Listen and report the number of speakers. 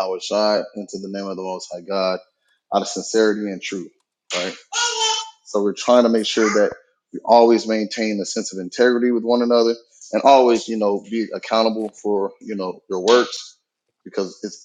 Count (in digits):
1